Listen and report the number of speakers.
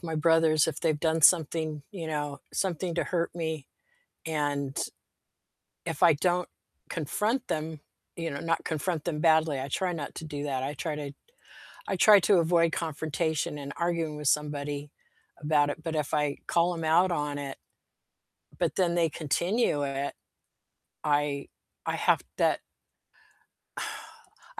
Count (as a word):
one